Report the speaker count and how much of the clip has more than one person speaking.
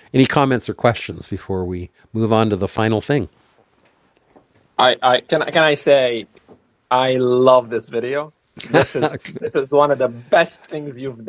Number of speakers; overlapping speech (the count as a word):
two, no overlap